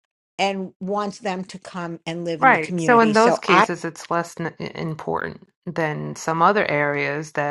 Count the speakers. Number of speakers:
2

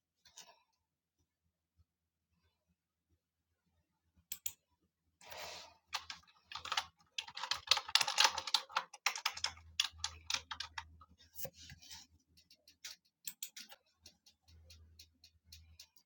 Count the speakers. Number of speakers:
0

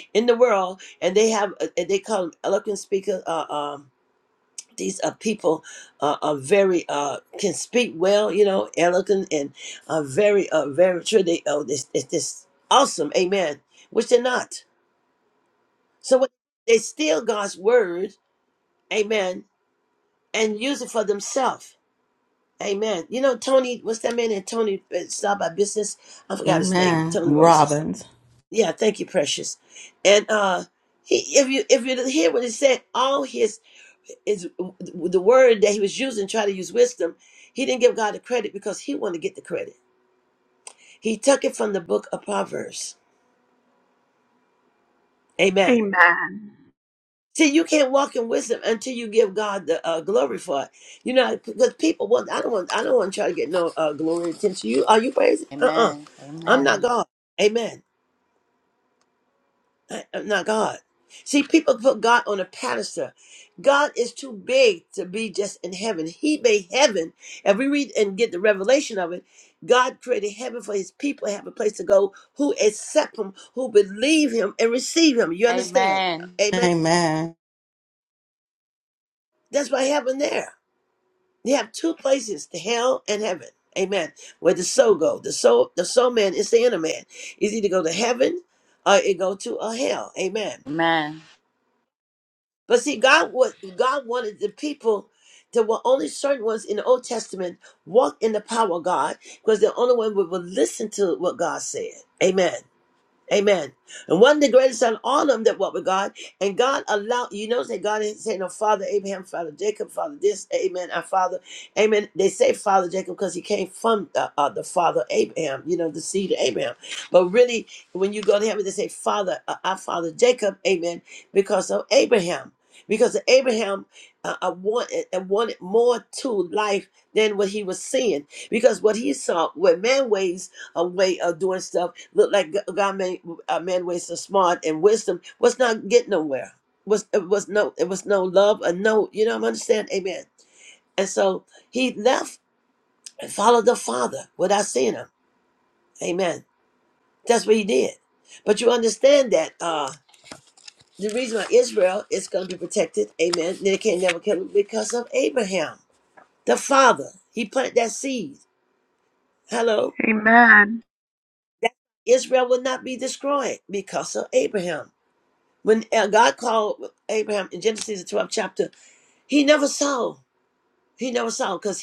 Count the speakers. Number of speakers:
4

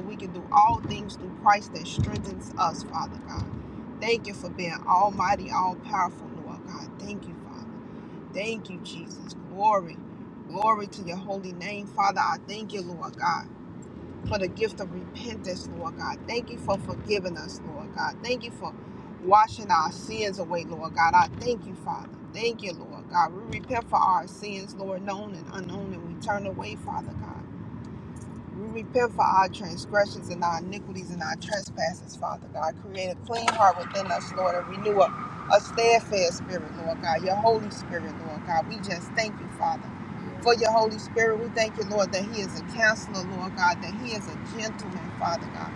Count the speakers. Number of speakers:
1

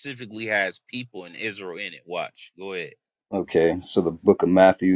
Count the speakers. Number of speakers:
2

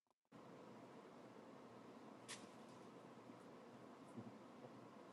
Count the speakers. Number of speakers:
0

